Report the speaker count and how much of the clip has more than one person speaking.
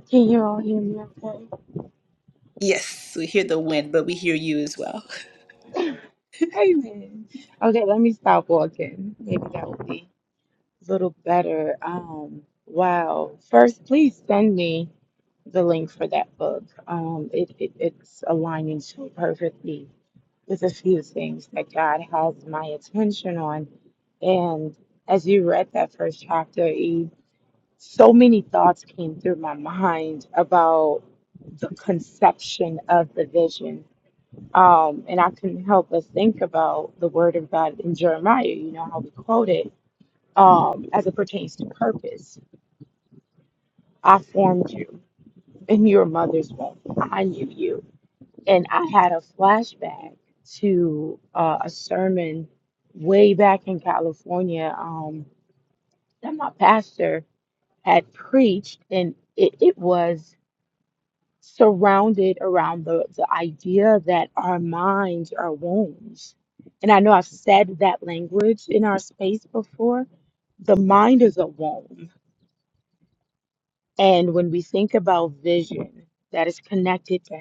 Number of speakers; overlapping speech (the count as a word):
two, no overlap